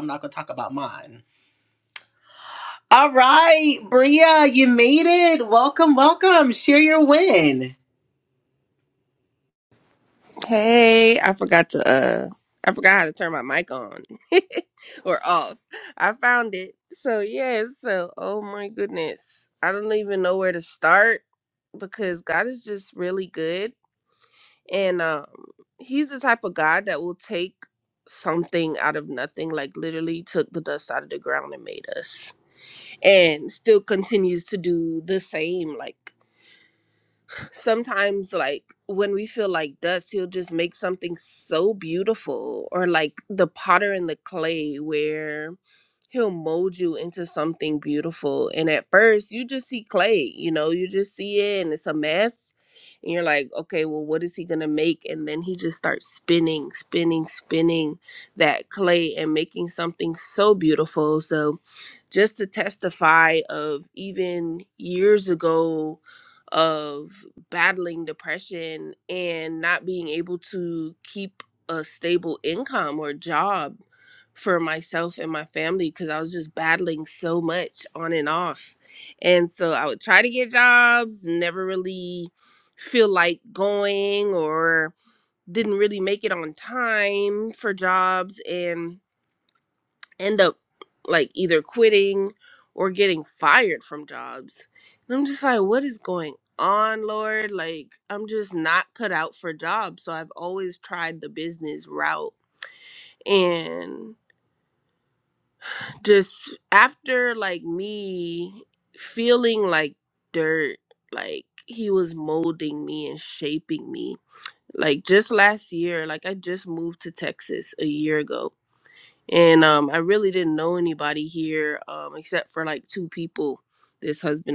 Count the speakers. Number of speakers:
2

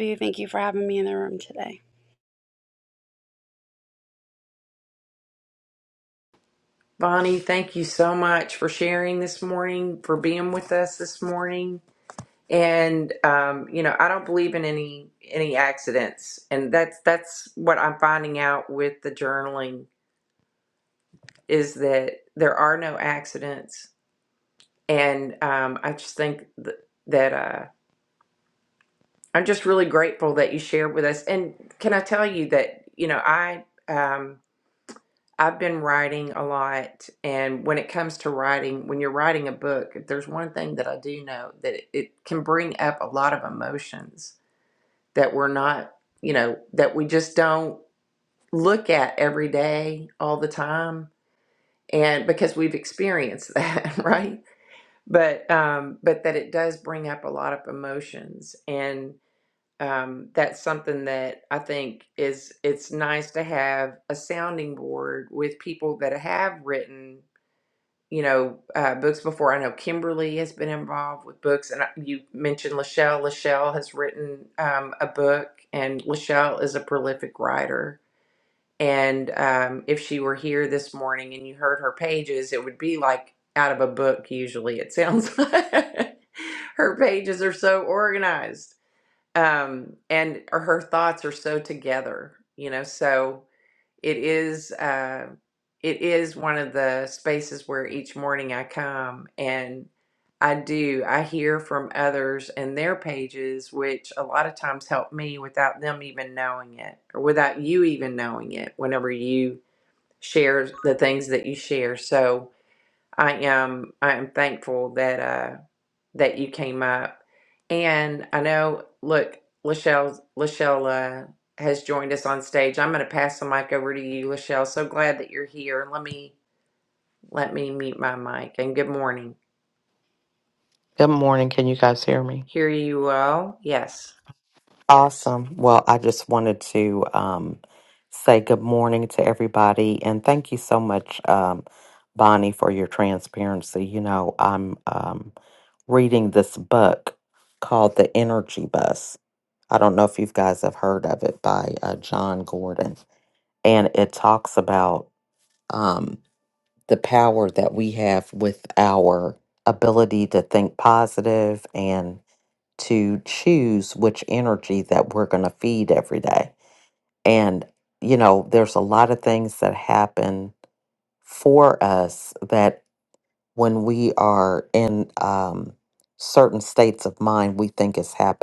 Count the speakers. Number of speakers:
3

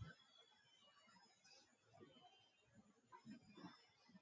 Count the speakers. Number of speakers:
0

